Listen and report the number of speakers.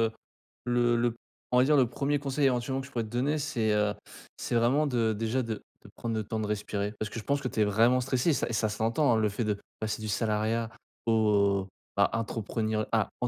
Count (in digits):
1